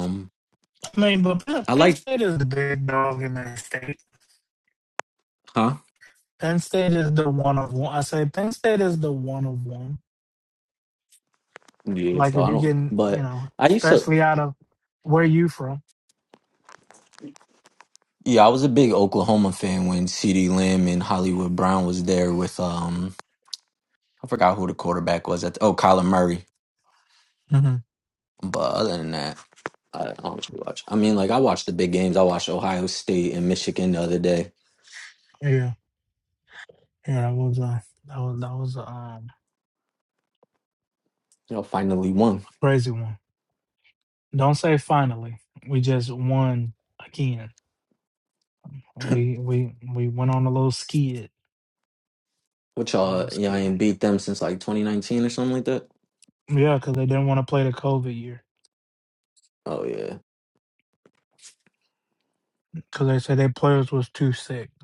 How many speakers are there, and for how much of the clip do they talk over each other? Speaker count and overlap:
two, about 4%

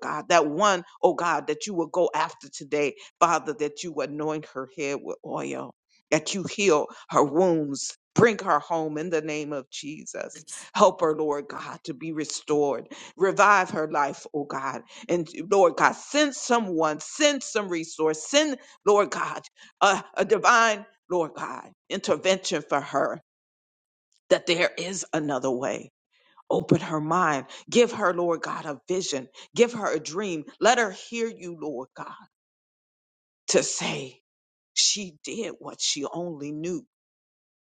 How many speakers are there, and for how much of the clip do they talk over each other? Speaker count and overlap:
one, no overlap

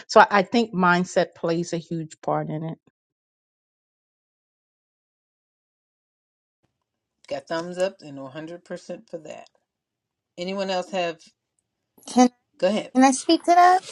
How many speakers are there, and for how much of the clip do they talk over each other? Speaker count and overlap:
three, no overlap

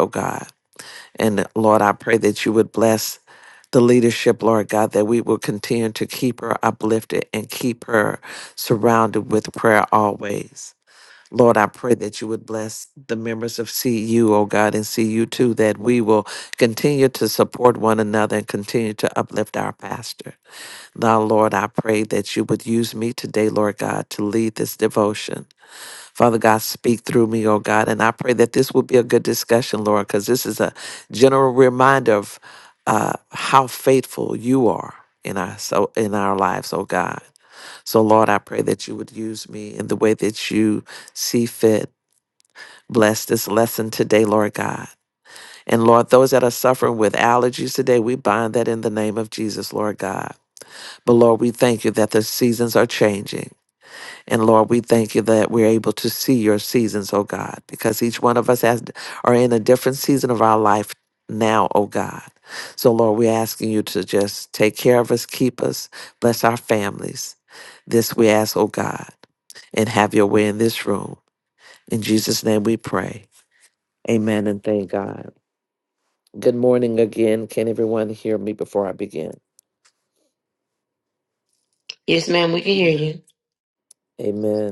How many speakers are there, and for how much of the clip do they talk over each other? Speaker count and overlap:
two, no overlap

